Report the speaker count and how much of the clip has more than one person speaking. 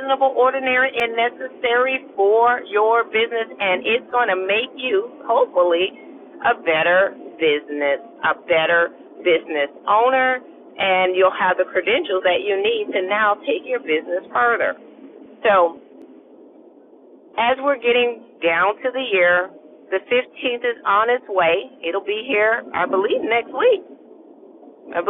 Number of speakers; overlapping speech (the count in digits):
1, no overlap